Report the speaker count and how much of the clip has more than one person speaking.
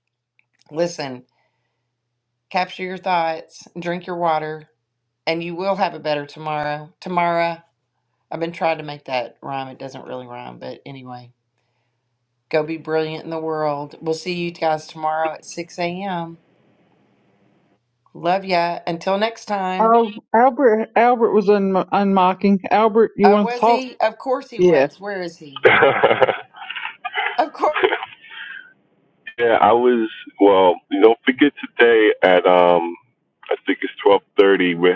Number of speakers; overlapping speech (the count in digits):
3, about 3%